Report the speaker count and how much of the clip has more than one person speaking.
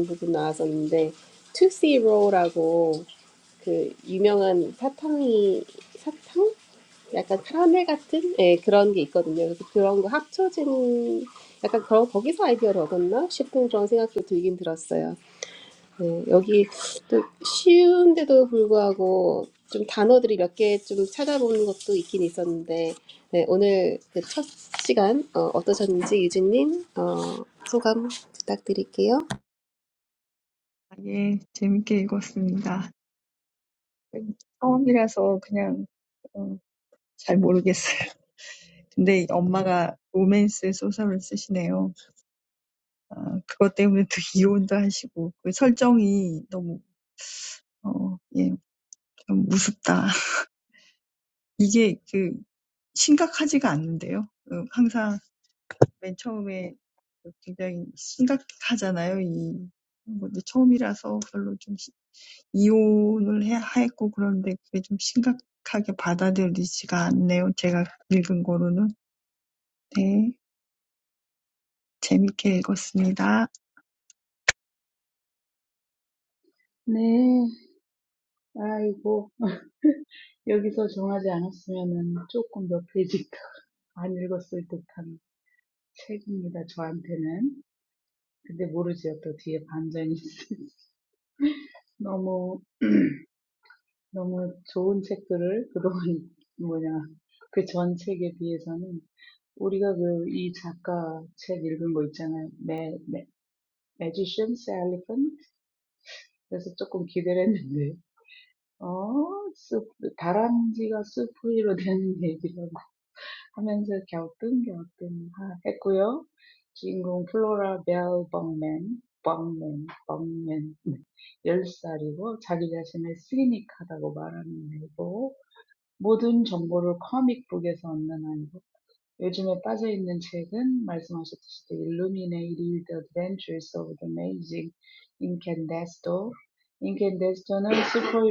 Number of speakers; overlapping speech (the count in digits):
3, no overlap